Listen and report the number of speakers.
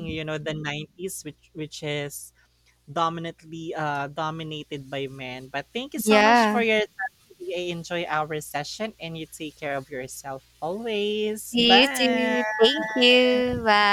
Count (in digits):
2